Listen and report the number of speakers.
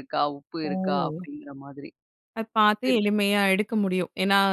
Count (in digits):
2